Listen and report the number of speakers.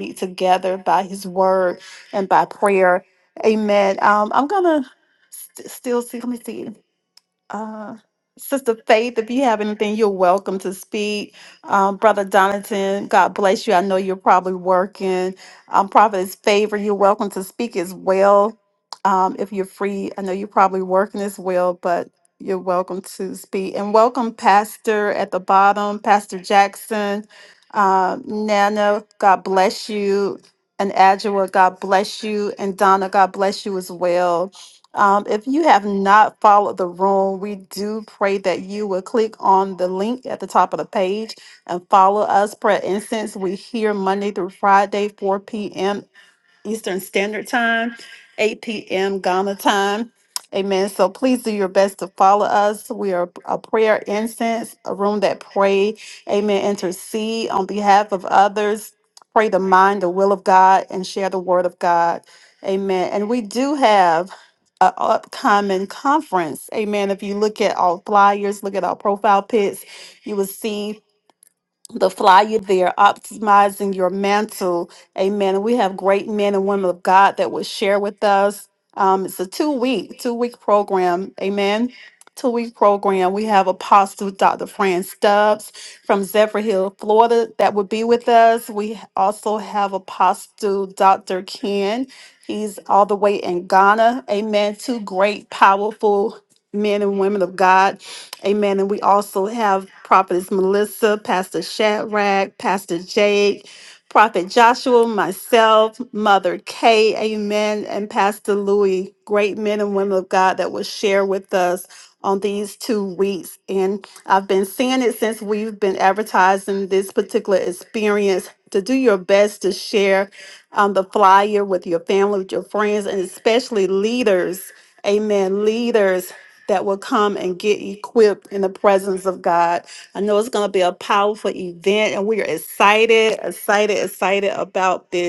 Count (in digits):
1